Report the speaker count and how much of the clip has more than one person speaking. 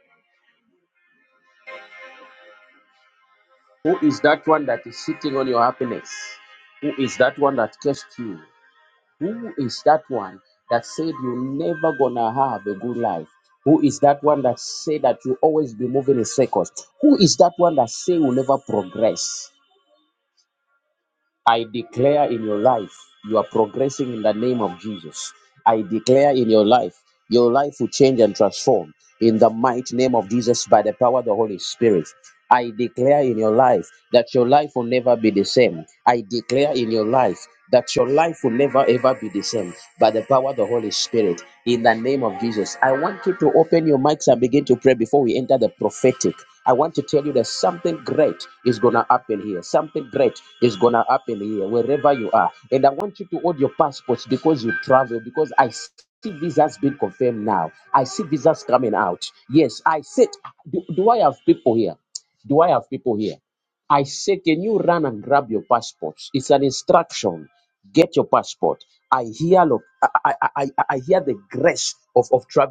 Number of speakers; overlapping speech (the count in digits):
1, no overlap